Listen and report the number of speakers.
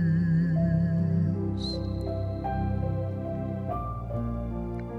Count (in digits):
0